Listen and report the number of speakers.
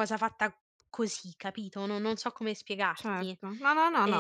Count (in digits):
2